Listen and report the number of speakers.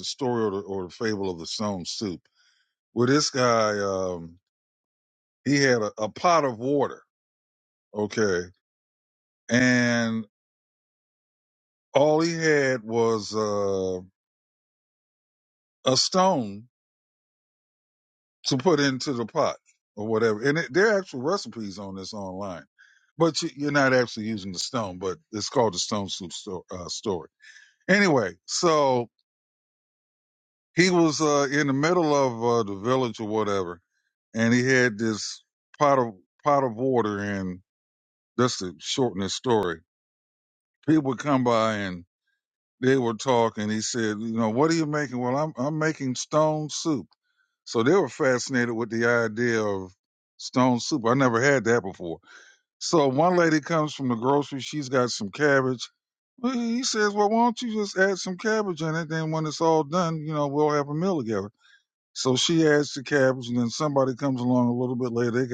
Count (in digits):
1